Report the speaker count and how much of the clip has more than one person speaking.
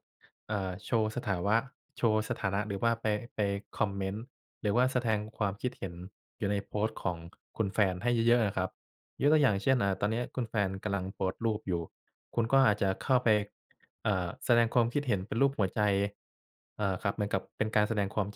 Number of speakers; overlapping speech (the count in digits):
1, no overlap